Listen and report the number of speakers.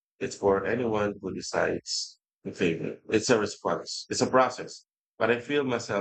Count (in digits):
1